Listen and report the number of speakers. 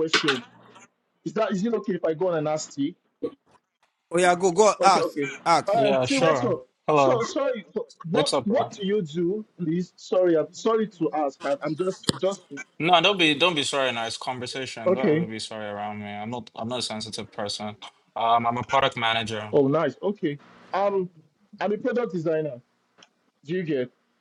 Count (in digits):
3